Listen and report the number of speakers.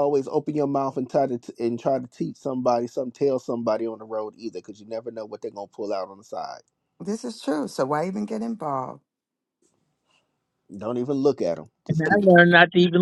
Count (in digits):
3